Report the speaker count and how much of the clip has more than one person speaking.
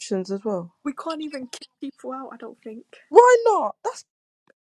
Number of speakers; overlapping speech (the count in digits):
2, no overlap